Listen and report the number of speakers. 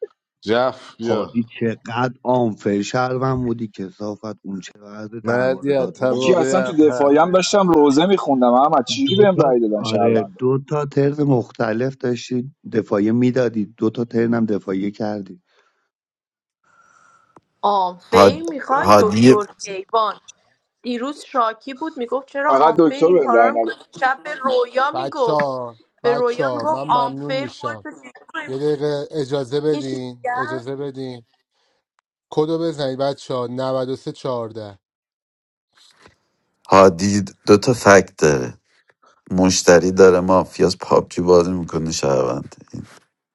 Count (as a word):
six